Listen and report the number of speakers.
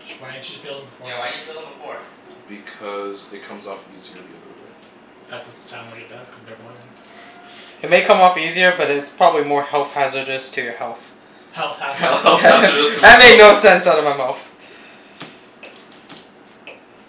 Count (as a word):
four